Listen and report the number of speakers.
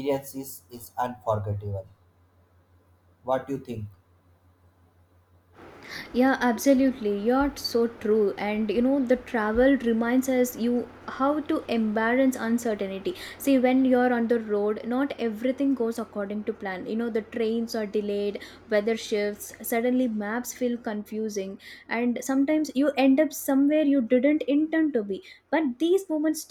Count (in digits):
2